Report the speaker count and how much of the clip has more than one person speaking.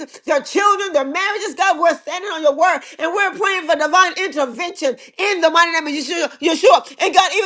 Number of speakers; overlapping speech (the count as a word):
one, no overlap